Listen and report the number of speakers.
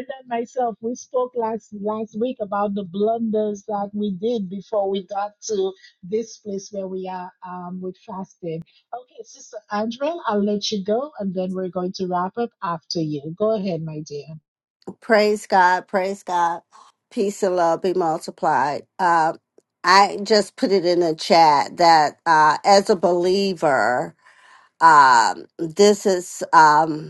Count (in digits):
2